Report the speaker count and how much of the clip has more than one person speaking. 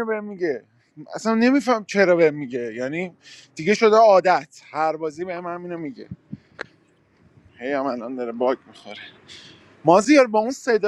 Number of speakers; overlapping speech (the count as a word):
one, no overlap